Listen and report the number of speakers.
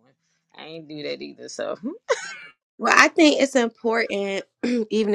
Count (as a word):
two